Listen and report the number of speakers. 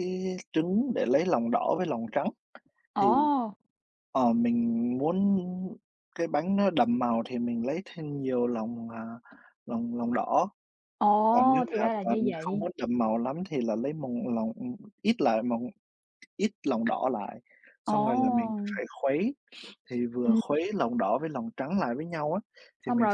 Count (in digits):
2